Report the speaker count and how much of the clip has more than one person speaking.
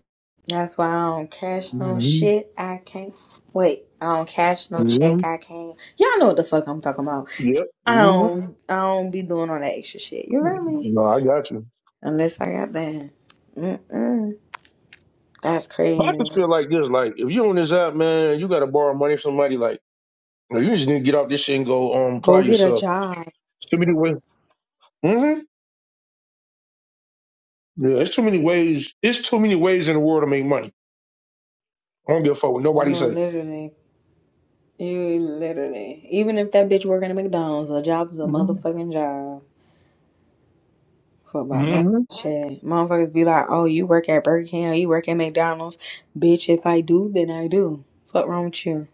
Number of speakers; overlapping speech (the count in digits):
2, about 8%